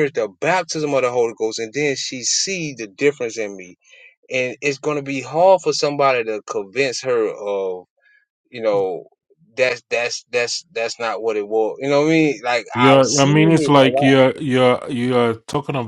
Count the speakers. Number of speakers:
2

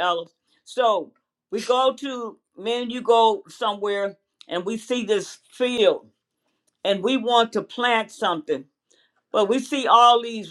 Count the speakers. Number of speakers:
1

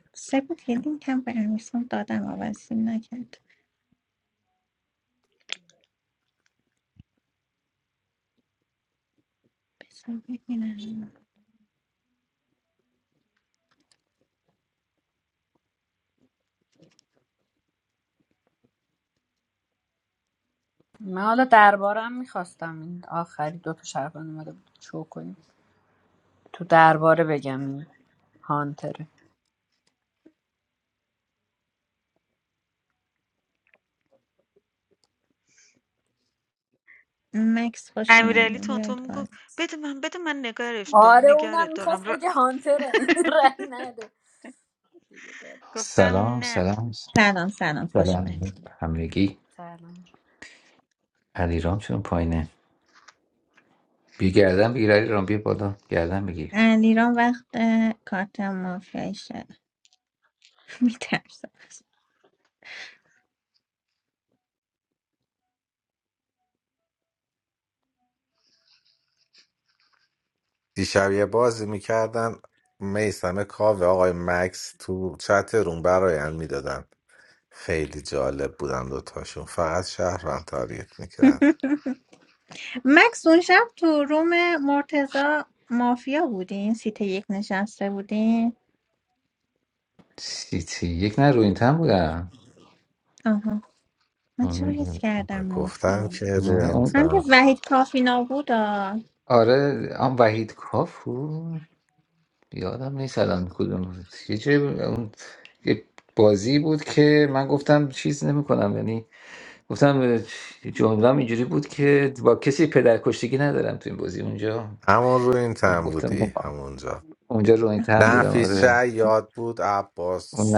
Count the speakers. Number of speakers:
5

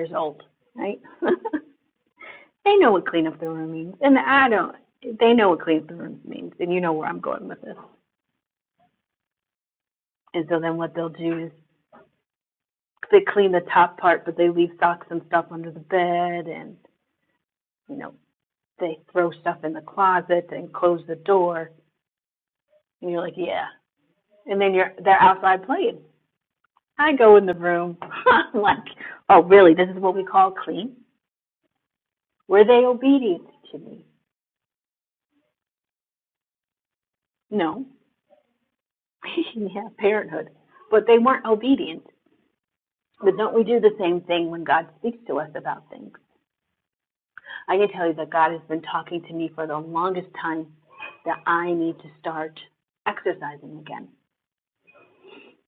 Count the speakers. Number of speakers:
1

